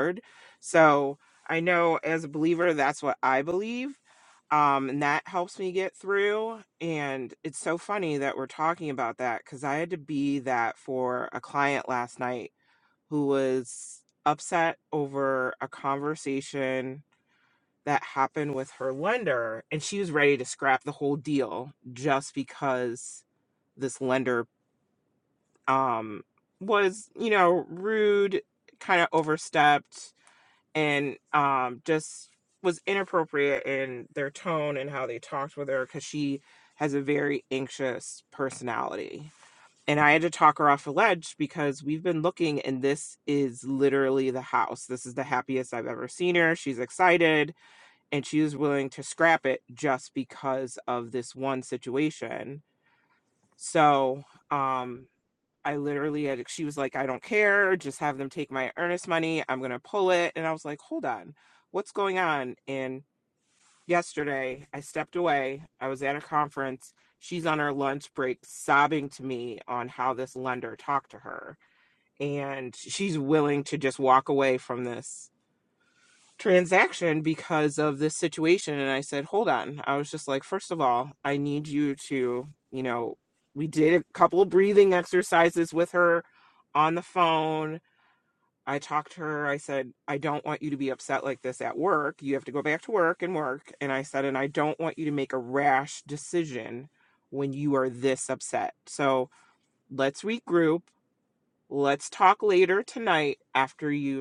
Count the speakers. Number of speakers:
1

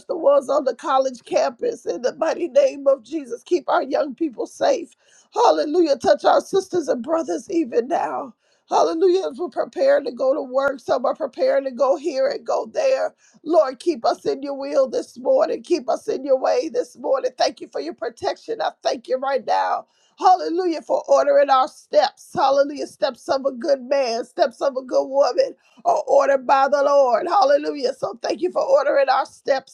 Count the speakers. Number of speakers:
1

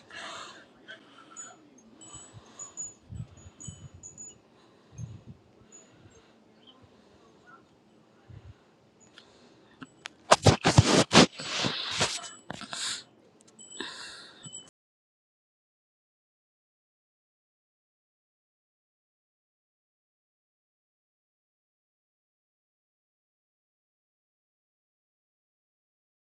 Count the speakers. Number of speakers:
0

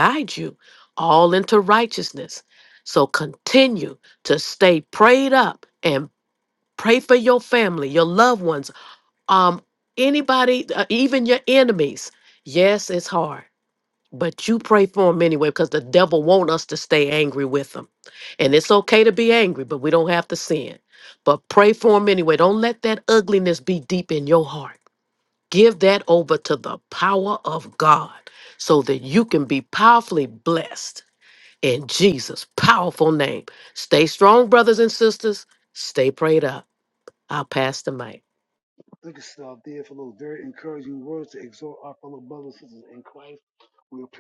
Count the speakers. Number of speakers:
2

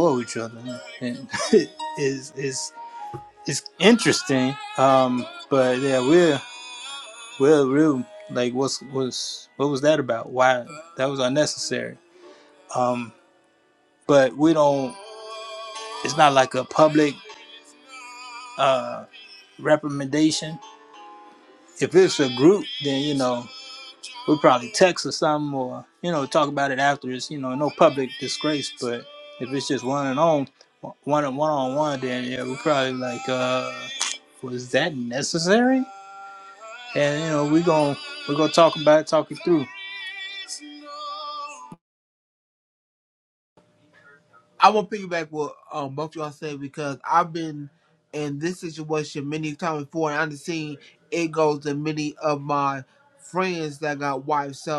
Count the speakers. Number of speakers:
2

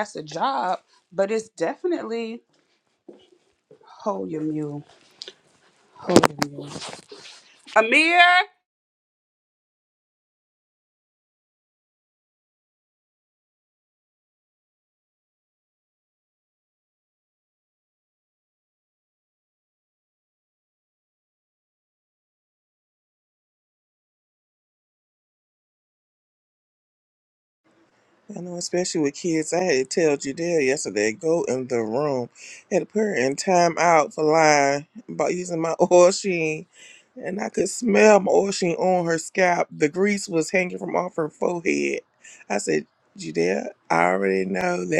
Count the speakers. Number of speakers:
2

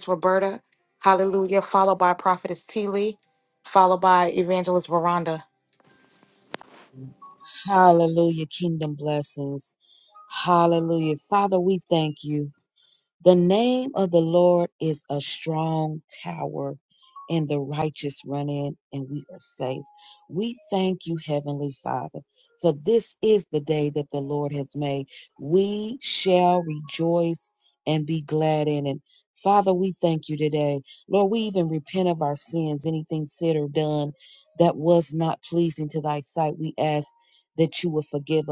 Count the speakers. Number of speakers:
2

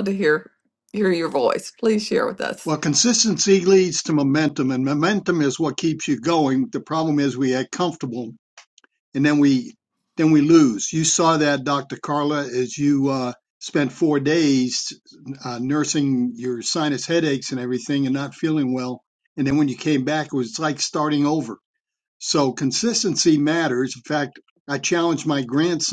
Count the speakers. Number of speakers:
2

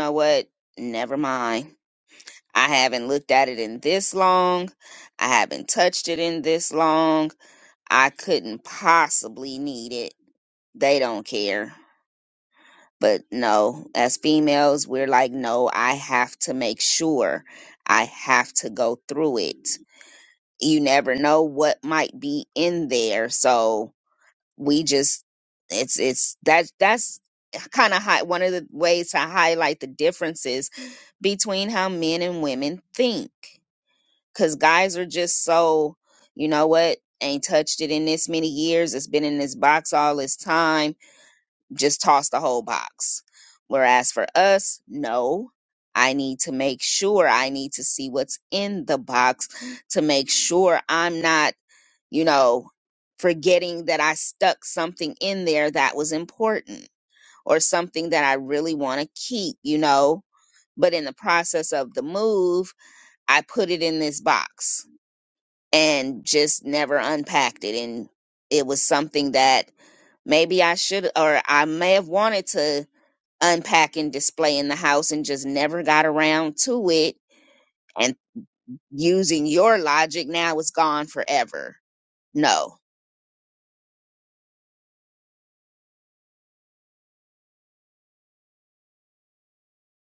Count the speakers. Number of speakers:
1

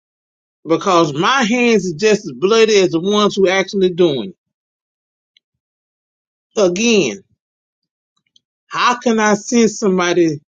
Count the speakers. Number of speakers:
1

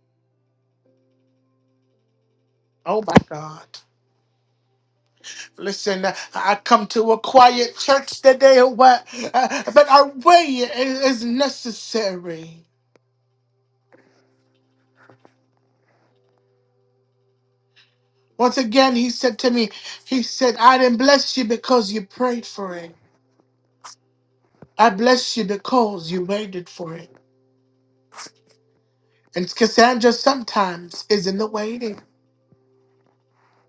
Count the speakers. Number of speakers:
1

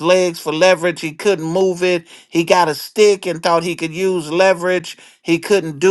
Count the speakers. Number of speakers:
1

